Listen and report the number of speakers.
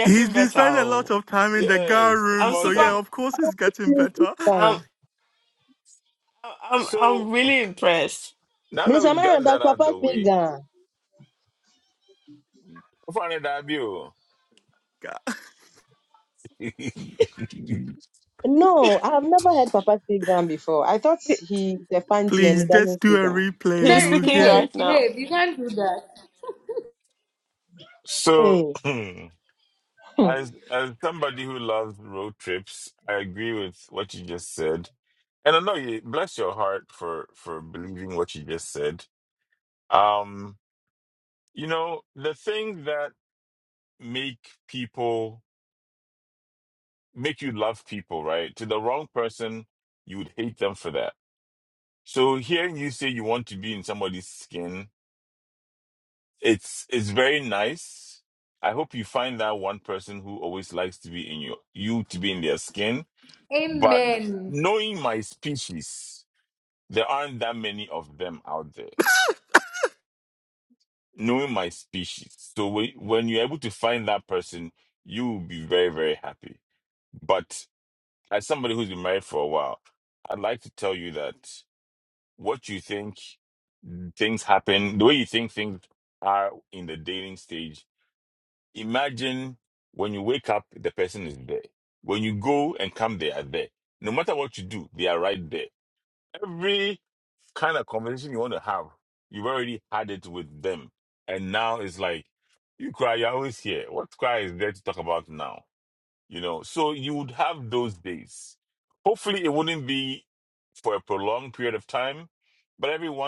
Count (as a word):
five